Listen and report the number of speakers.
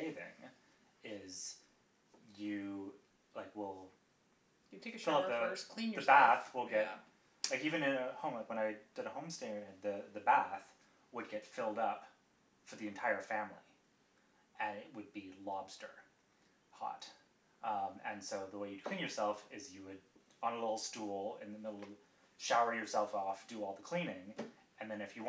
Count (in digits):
2